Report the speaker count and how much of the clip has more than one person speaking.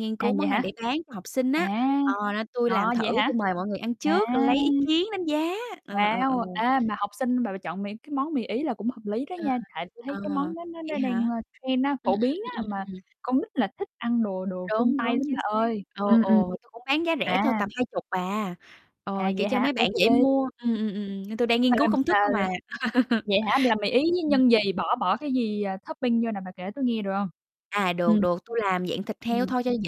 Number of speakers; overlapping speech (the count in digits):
2, about 26%